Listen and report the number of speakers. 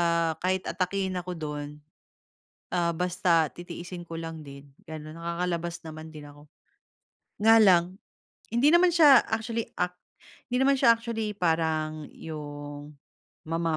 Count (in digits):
1